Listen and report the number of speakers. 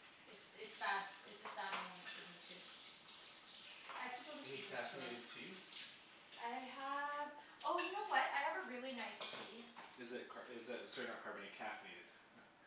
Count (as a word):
two